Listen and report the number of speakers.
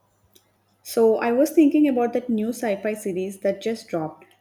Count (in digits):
1